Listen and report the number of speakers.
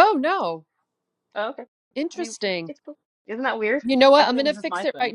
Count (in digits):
2